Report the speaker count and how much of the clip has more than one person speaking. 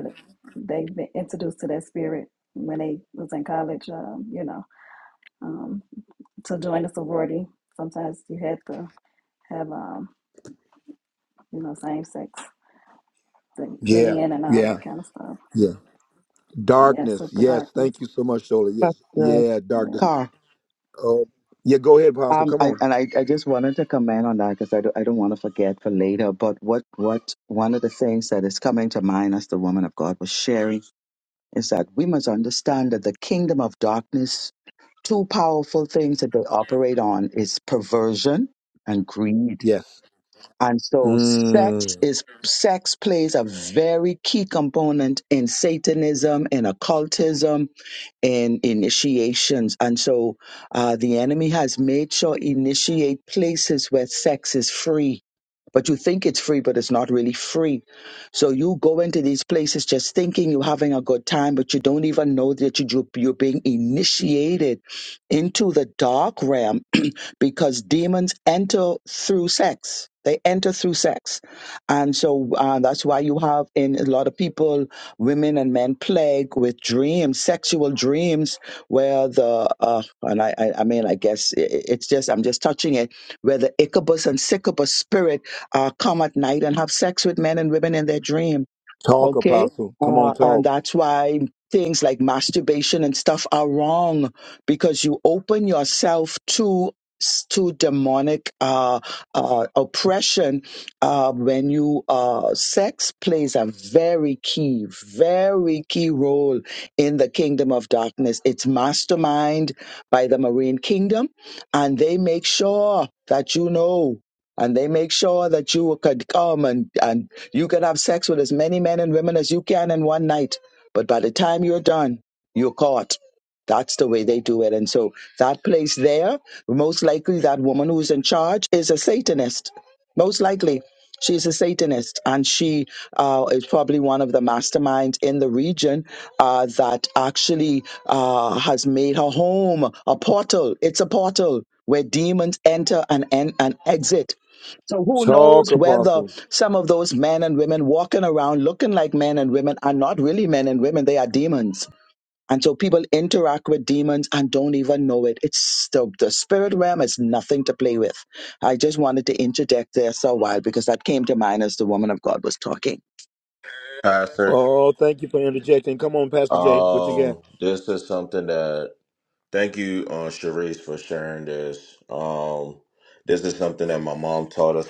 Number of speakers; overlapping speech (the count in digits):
4, about 4%